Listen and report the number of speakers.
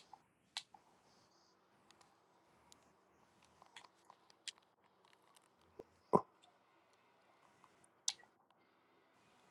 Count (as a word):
zero